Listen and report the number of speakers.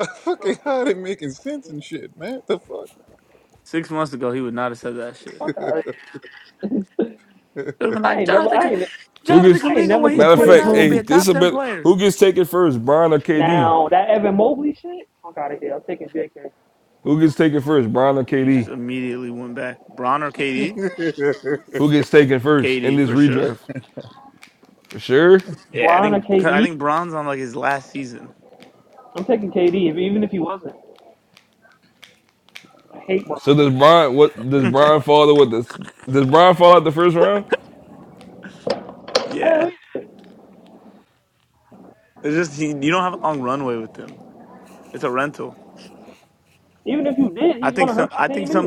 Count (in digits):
4